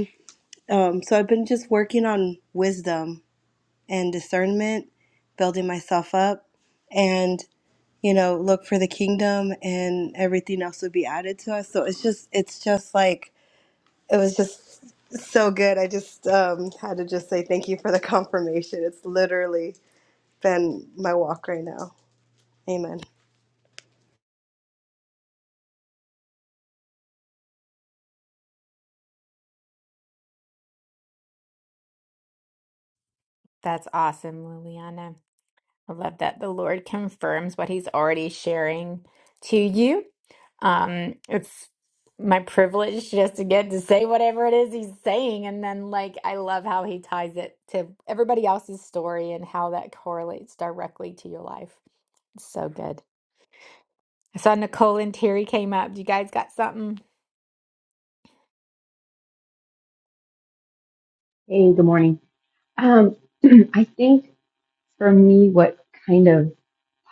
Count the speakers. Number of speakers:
three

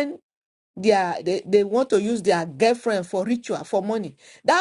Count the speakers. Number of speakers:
one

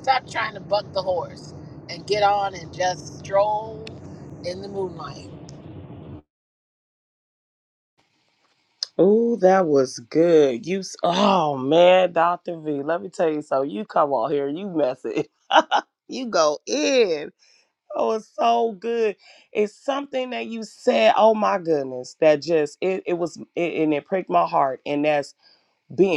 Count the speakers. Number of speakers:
two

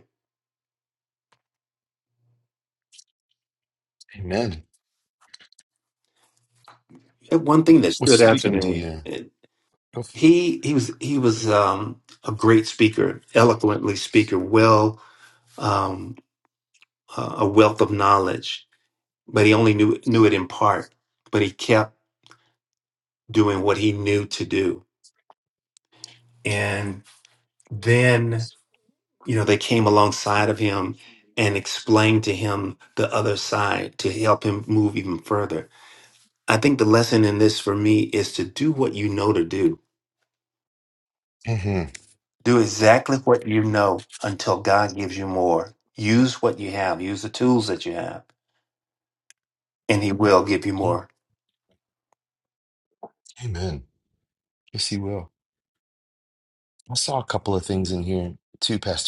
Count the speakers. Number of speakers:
two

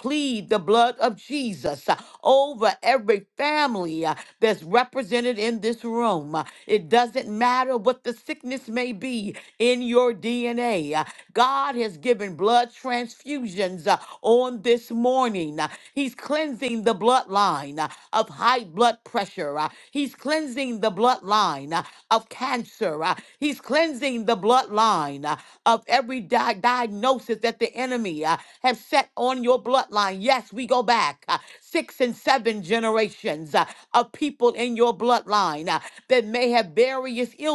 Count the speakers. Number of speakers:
one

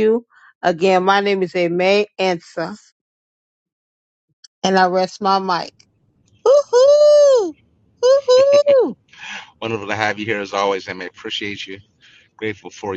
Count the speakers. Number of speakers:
two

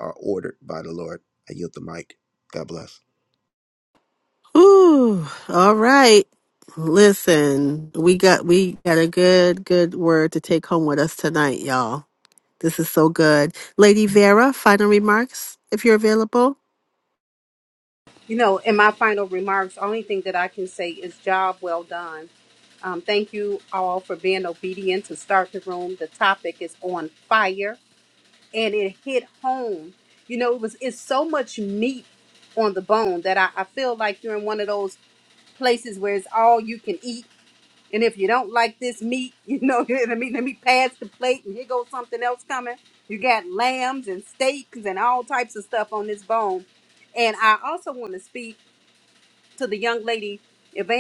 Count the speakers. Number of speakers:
three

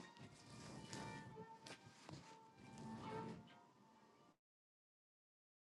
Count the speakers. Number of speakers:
zero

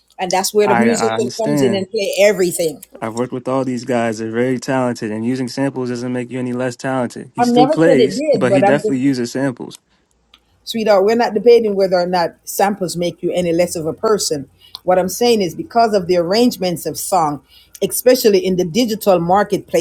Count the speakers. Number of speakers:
two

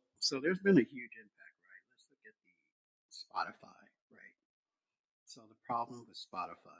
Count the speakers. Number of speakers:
one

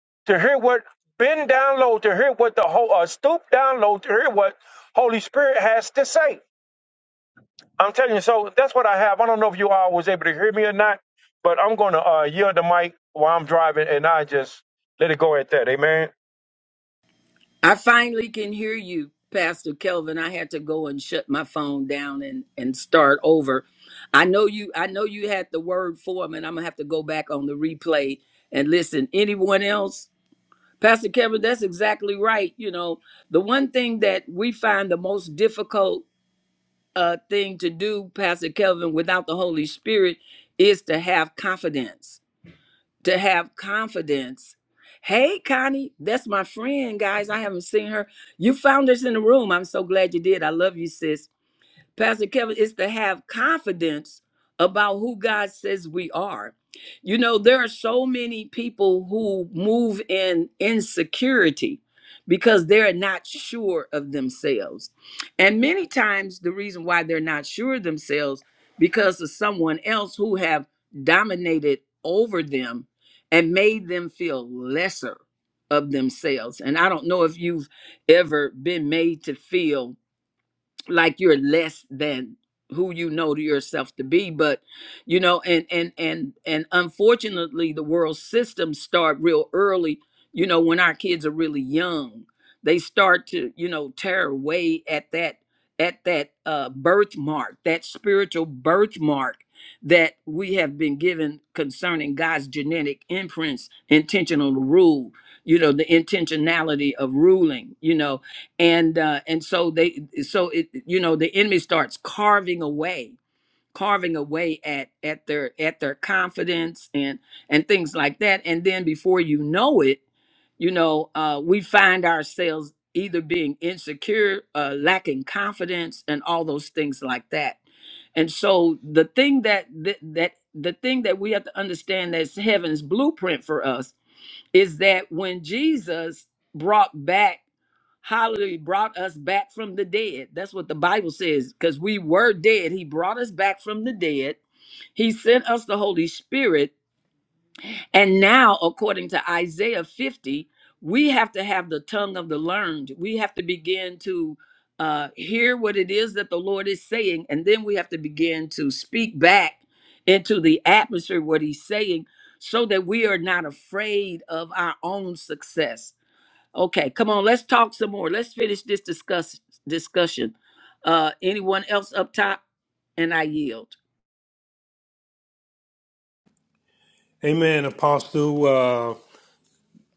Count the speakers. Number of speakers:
three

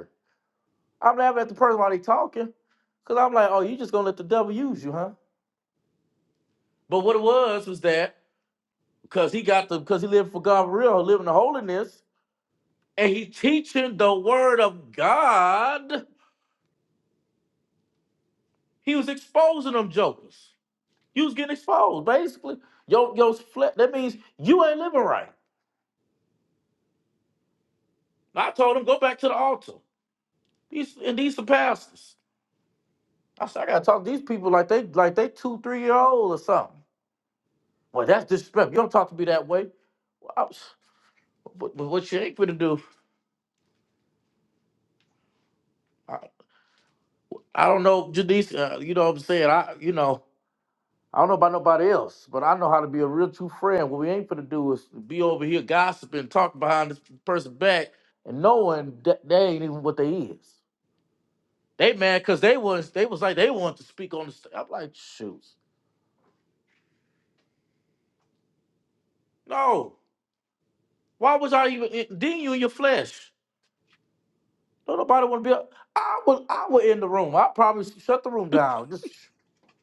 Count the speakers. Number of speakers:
one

